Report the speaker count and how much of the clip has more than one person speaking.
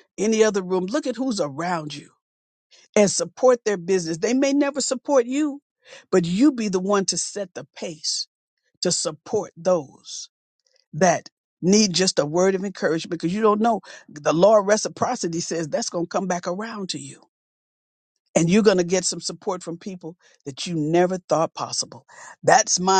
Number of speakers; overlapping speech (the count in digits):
1, no overlap